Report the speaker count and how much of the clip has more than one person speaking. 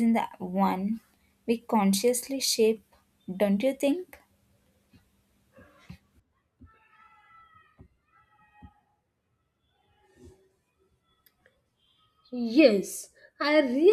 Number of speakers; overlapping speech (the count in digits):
2, no overlap